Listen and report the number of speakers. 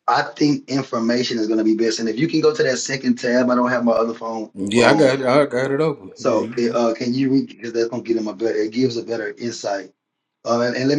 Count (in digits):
2